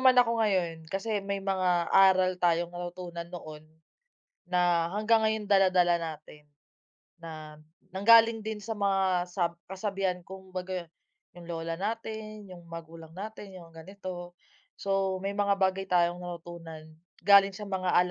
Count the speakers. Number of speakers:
1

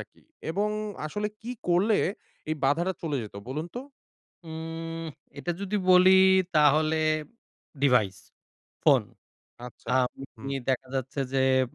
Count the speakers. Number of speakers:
2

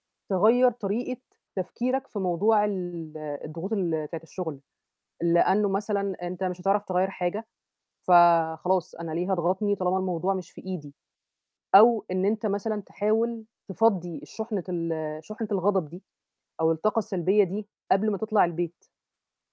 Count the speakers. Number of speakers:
1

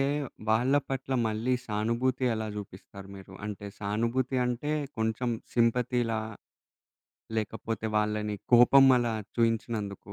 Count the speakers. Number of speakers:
1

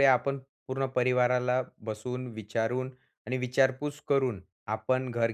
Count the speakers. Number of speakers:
1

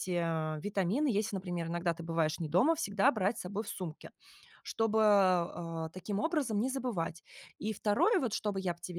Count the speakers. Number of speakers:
1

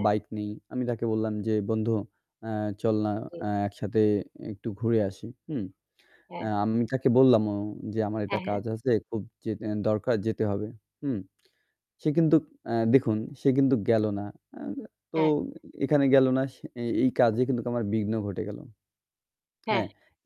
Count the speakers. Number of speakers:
2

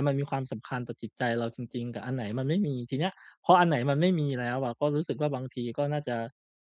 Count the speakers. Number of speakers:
1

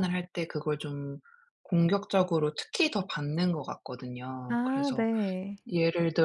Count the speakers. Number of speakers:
2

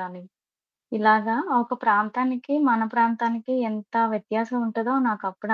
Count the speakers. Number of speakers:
1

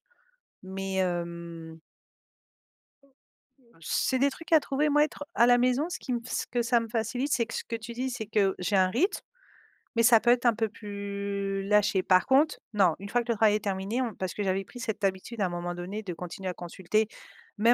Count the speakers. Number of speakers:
1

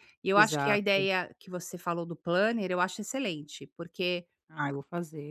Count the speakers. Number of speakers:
2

